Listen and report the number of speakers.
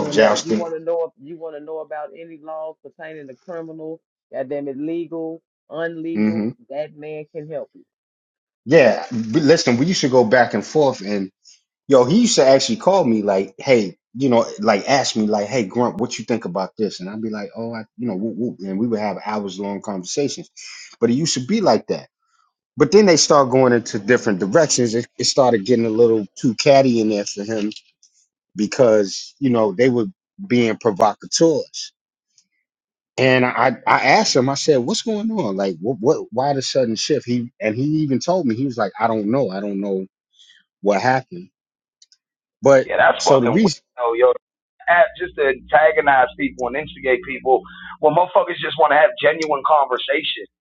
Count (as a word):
three